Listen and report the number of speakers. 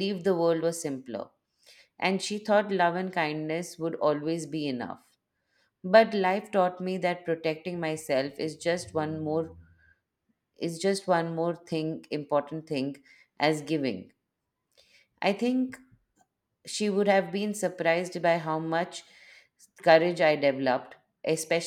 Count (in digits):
1